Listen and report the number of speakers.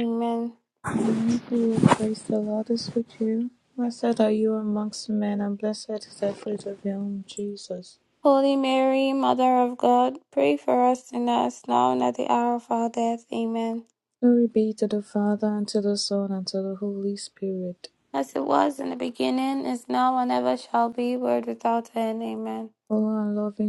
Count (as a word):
two